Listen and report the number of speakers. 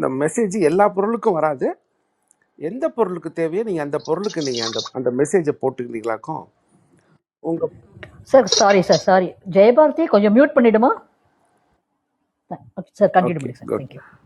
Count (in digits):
2